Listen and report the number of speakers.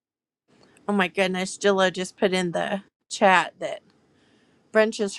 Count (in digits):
1